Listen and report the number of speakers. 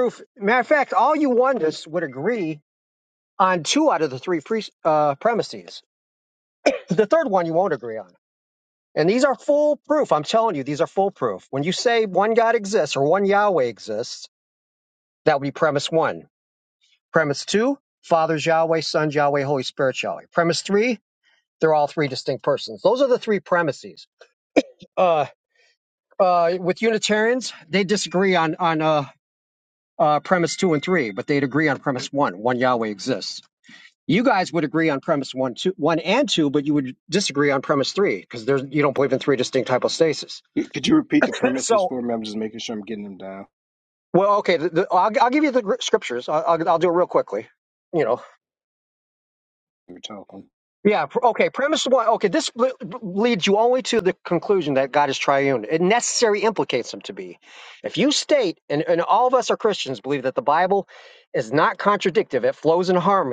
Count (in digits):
2